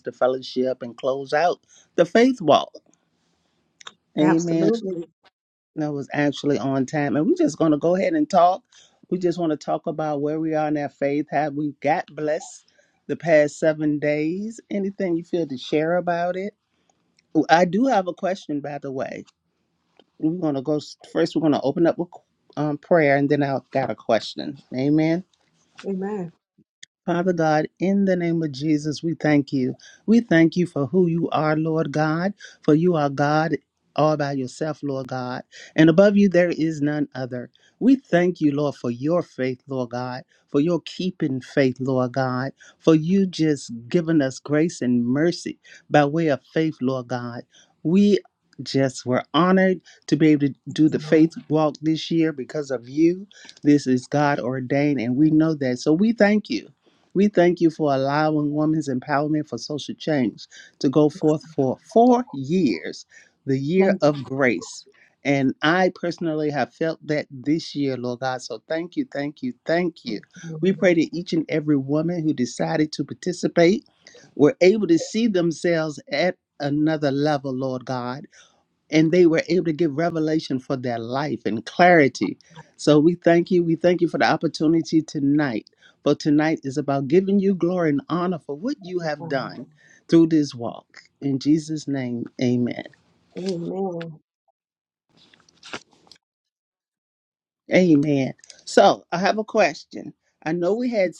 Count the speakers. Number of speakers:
two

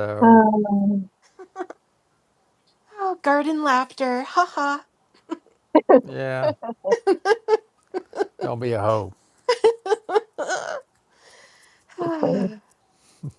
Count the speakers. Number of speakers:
three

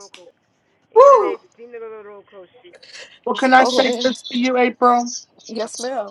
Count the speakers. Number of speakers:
three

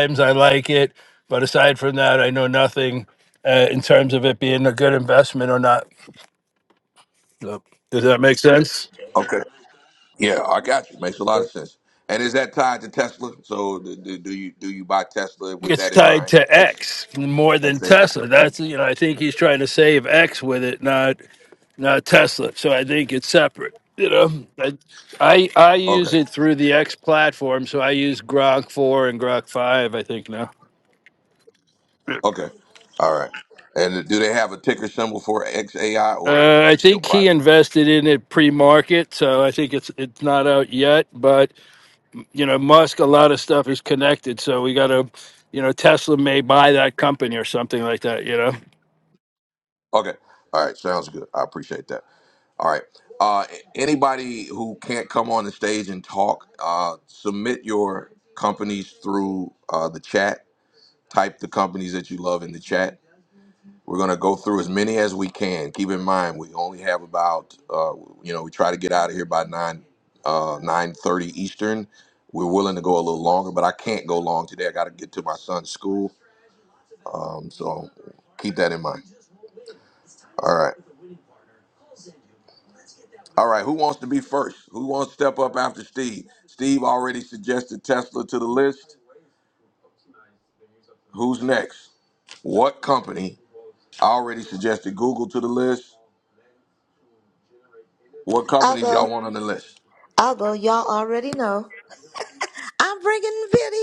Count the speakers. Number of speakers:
three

